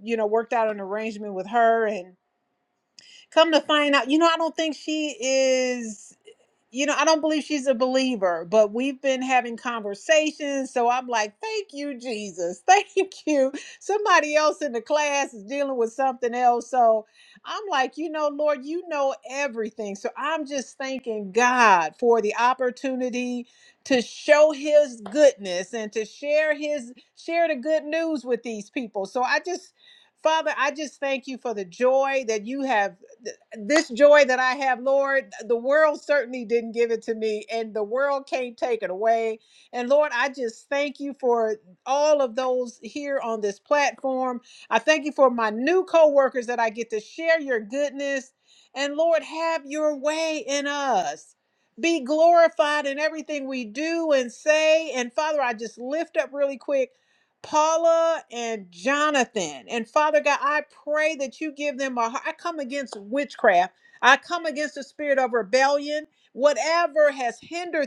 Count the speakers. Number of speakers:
1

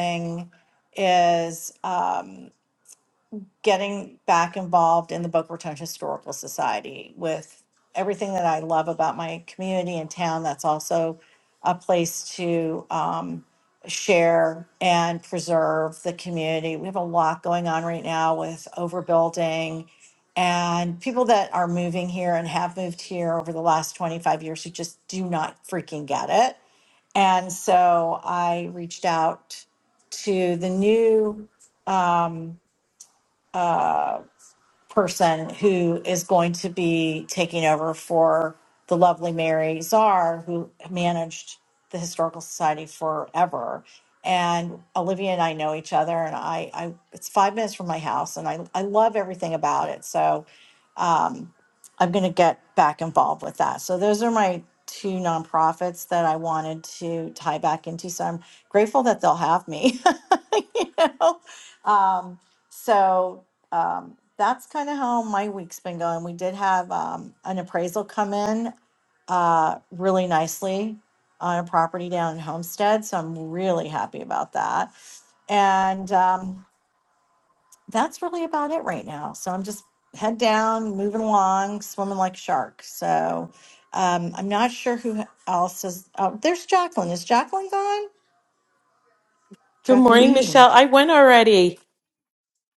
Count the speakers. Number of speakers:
2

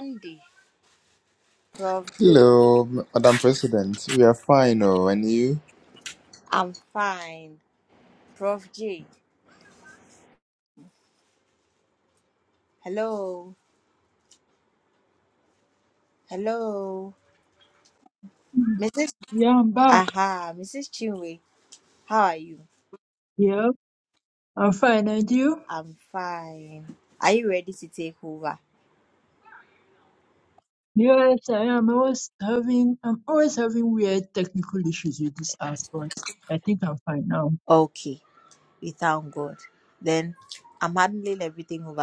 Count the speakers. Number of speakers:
3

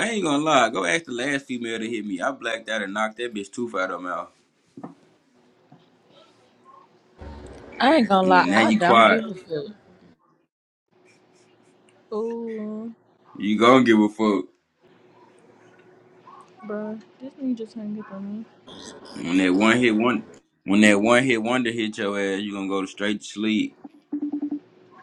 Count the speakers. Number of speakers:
3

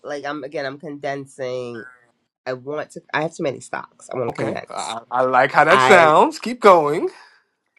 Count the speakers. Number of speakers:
2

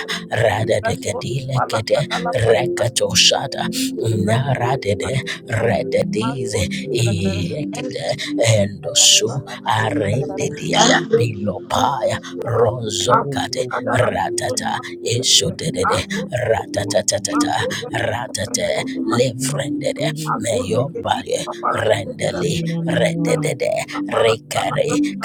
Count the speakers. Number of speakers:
3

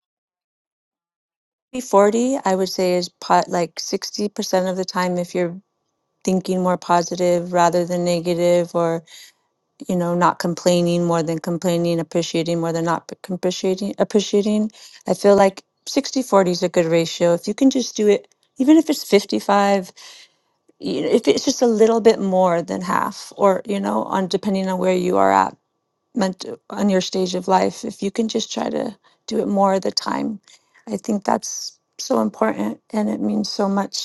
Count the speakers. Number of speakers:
1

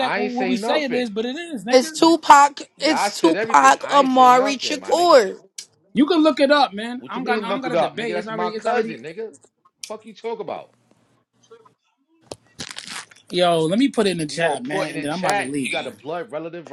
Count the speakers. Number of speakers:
3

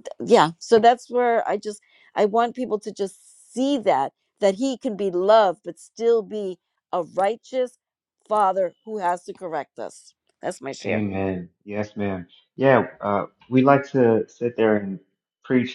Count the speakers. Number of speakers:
2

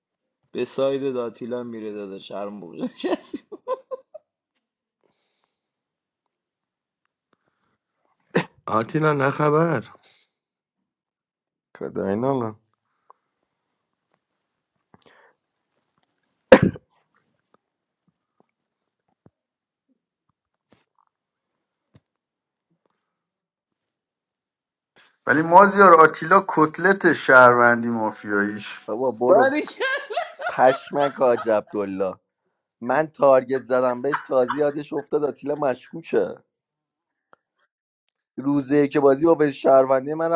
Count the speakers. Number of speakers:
4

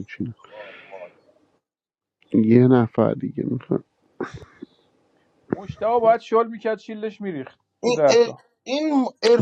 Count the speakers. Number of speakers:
3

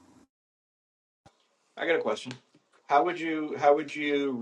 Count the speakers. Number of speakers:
1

